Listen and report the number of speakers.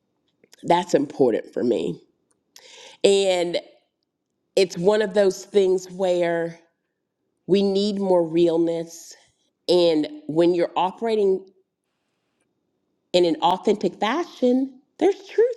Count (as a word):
one